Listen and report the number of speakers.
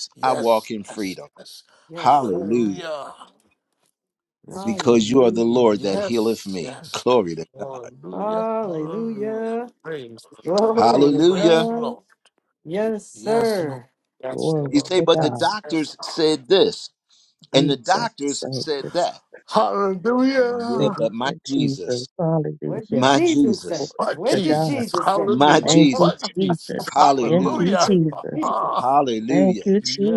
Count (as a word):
four